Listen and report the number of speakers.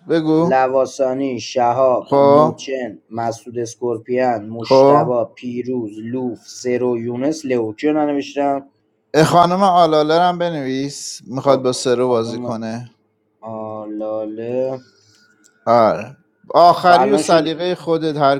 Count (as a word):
two